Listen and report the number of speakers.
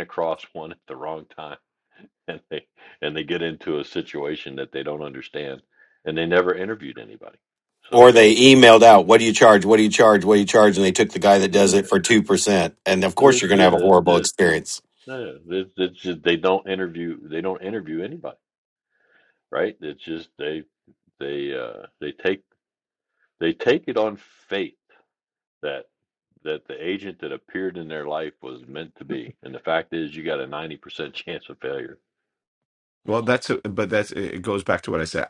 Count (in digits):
3